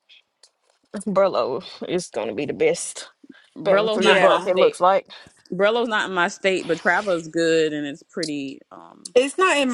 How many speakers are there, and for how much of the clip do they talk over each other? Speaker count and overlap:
3, about 11%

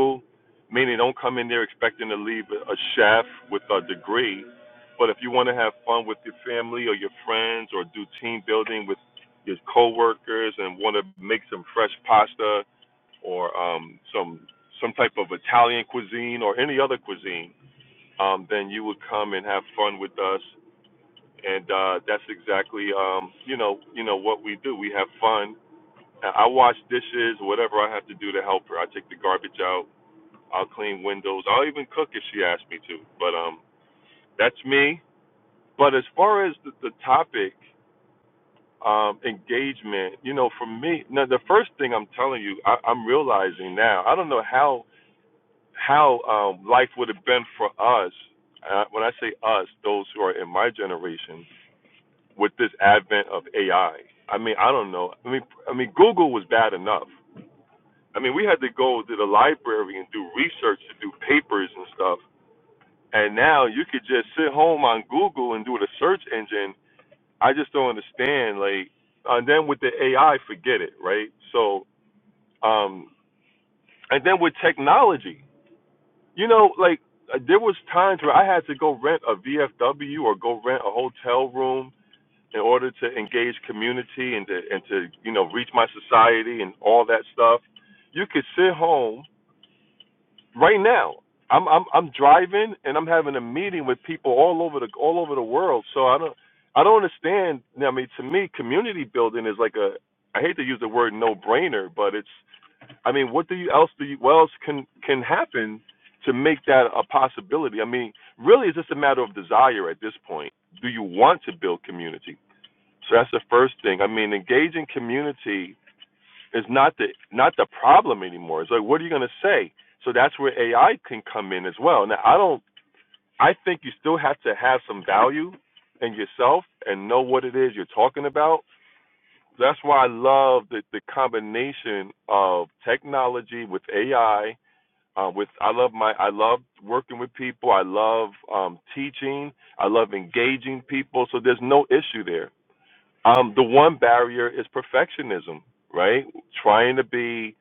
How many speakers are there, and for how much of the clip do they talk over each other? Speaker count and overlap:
1, no overlap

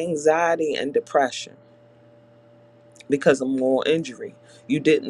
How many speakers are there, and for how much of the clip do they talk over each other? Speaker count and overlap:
1, no overlap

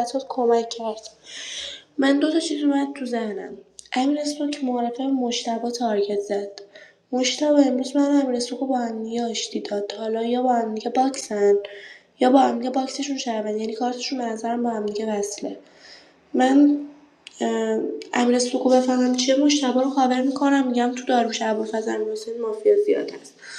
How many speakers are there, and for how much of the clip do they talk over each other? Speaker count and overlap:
1, no overlap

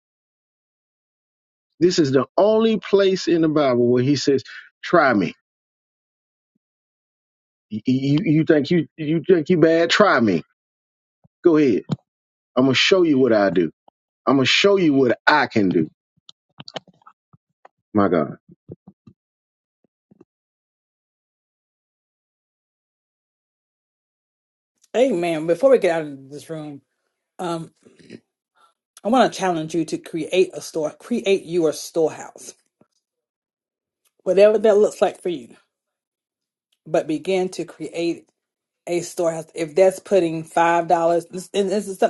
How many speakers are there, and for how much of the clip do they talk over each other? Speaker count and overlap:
2, no overlap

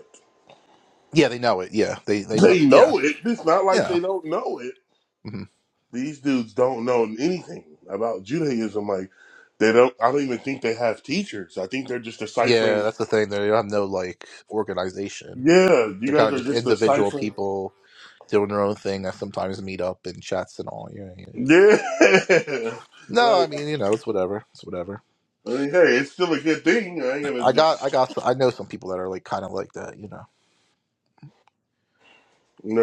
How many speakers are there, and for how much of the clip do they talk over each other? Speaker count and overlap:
2, about 11%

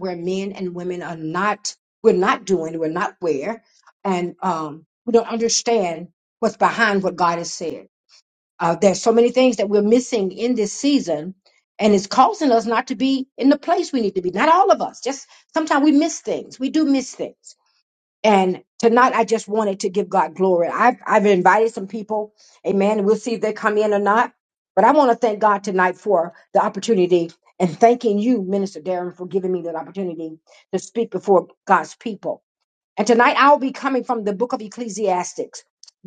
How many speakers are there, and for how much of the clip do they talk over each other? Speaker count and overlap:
1, no overlap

